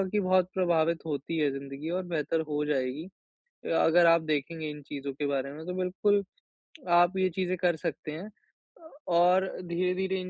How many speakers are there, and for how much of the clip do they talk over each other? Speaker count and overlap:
1, no overlap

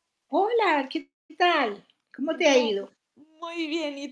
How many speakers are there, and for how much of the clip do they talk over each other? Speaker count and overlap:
2, about 10%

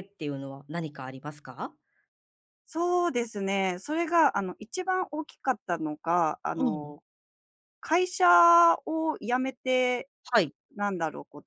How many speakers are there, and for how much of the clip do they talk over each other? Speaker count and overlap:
2, about 3%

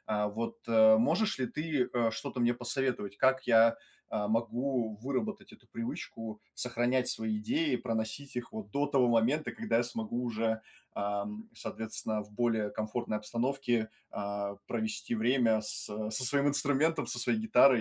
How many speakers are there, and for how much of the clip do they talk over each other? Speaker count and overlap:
1, no overlap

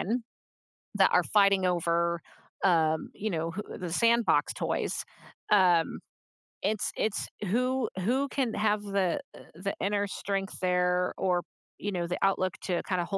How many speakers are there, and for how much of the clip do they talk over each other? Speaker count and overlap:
1, no overlap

